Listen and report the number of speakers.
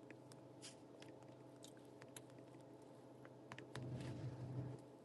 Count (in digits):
0